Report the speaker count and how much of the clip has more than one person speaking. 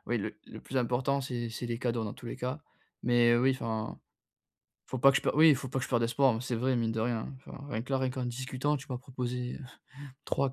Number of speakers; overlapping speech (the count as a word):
one, no overlap